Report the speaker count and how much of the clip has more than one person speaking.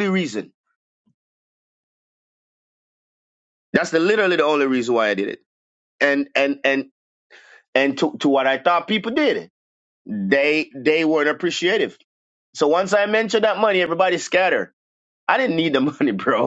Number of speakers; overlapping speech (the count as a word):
one, no overlap